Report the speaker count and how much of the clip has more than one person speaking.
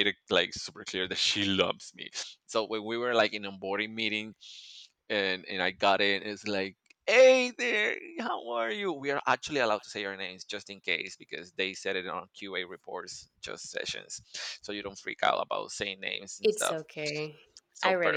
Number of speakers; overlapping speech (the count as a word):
two, about 3%